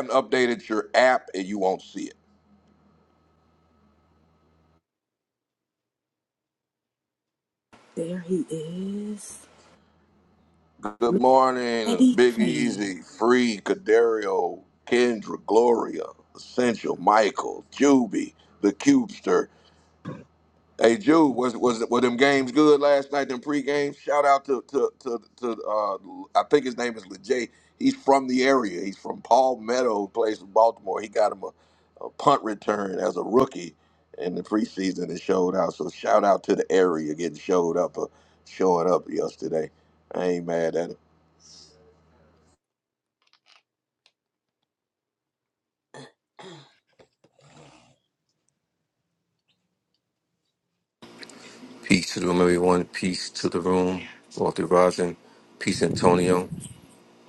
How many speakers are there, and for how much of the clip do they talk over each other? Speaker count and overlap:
3, about 2%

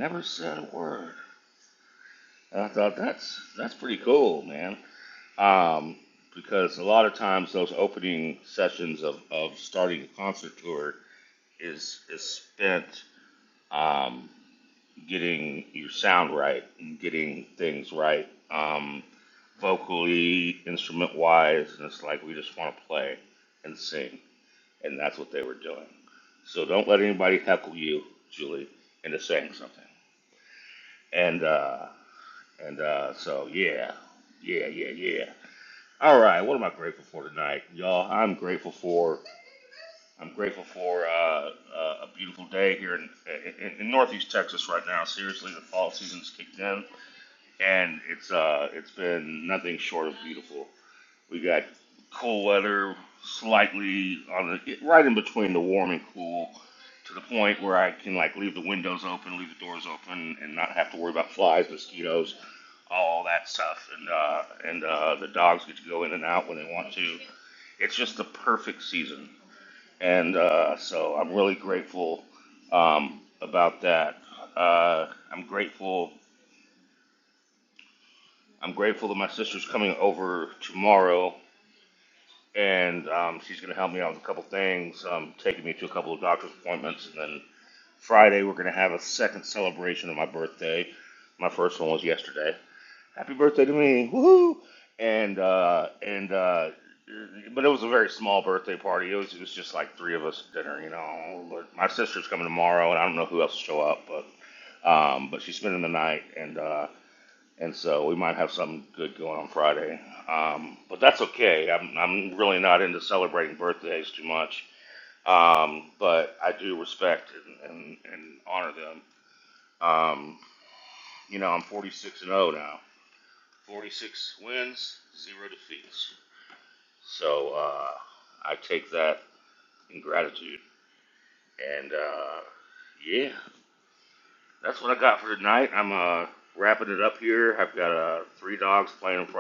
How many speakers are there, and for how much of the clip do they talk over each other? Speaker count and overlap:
1, no overlap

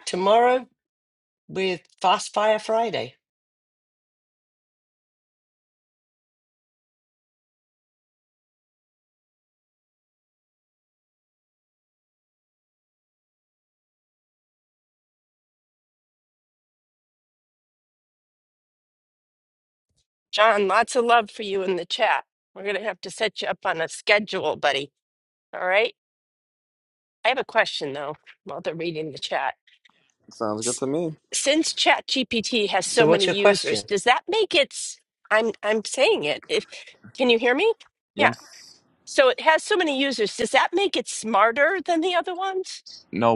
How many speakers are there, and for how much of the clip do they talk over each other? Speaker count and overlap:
3, about 2%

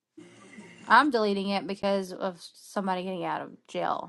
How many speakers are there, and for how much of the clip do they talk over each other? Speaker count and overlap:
1, no overlap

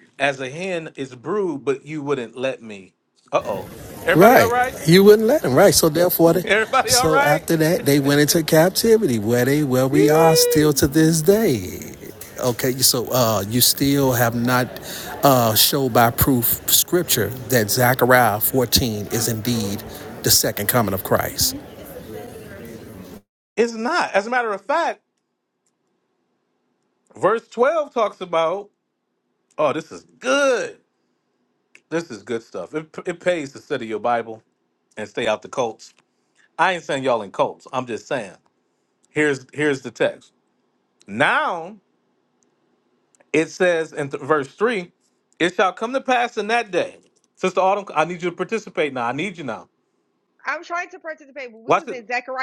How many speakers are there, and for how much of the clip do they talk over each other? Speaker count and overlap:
3, about 3%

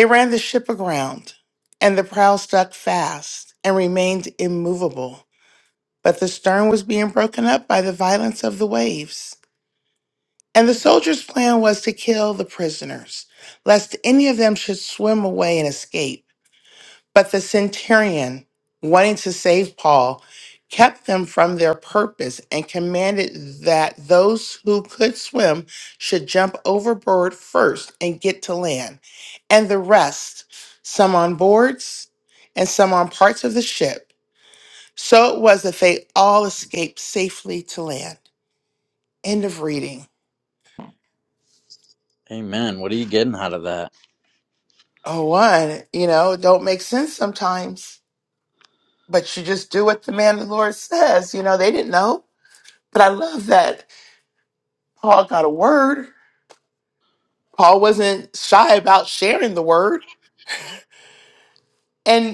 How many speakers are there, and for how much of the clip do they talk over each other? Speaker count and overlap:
2, no overlap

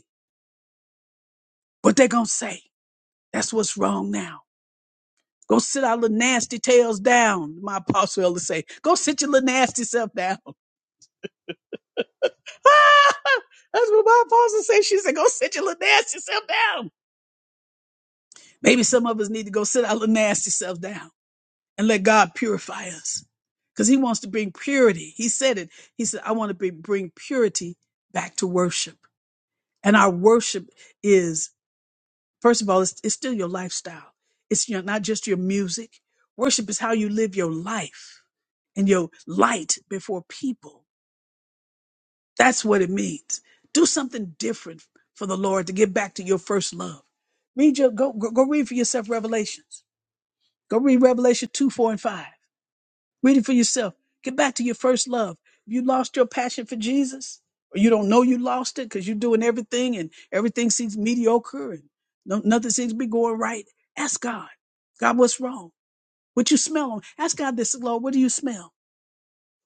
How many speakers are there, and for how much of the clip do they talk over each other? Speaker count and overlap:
1, no overlap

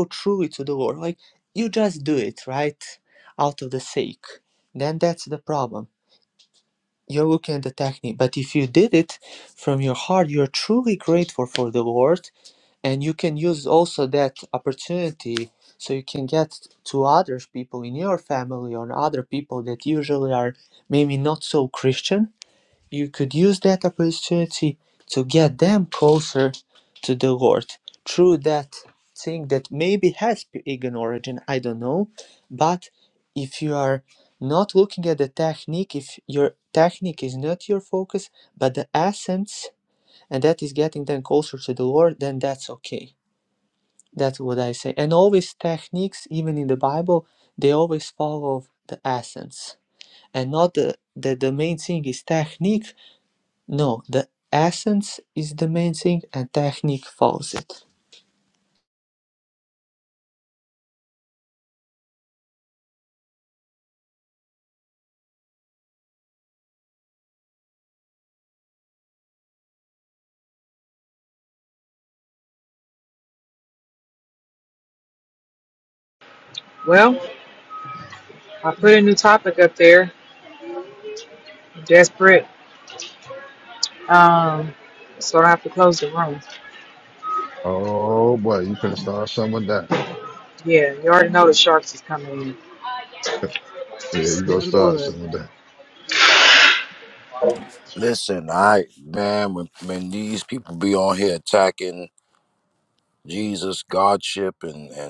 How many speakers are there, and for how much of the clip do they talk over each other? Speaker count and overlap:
4, about 1%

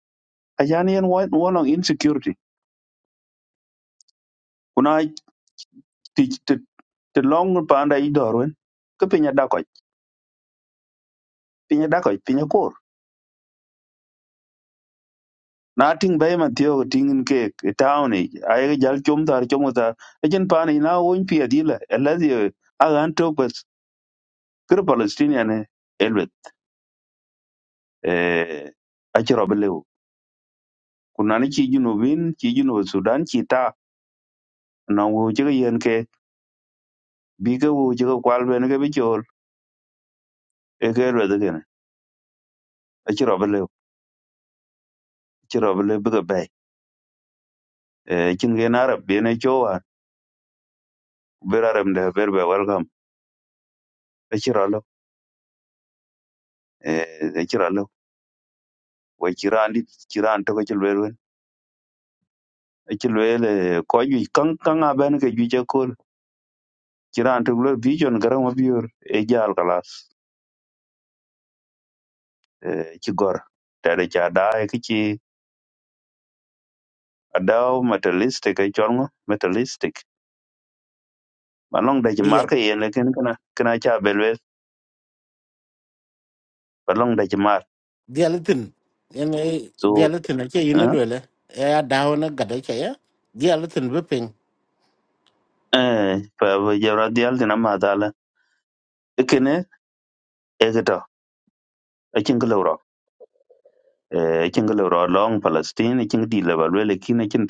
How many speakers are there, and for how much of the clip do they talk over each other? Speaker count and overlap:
2, under 1%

